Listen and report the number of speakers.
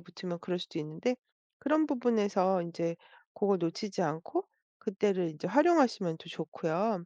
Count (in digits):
1